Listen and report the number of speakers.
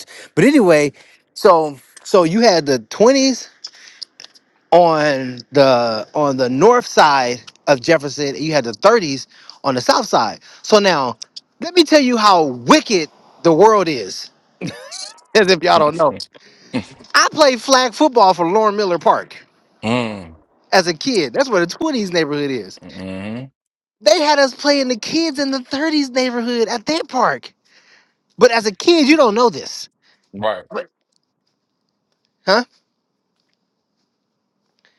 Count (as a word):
two